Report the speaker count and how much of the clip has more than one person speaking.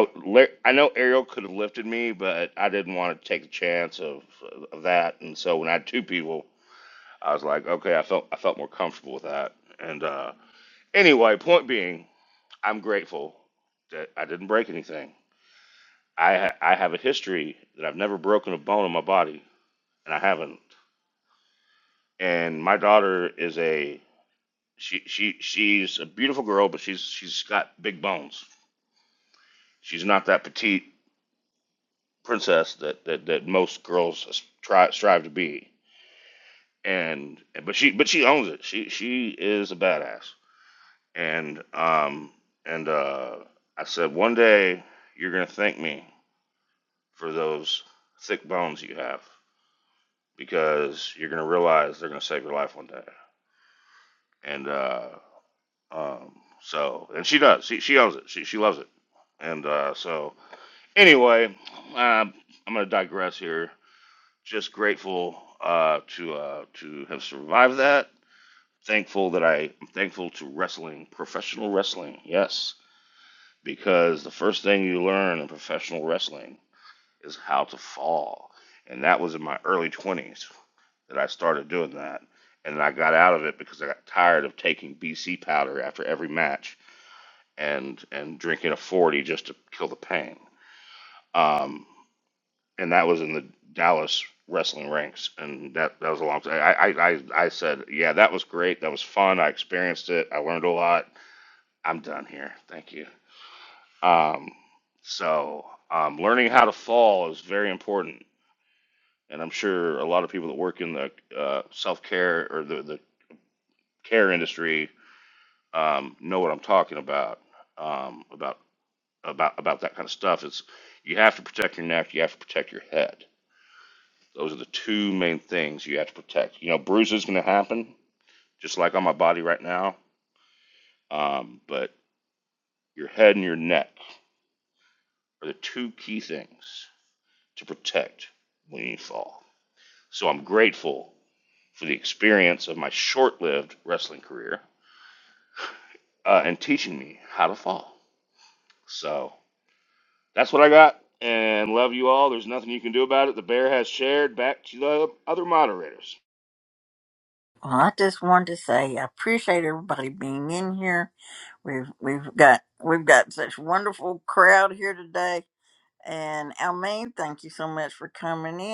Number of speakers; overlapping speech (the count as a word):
two, no overlap